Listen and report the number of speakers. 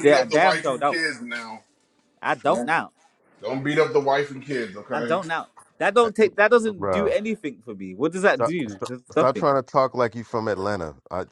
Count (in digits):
3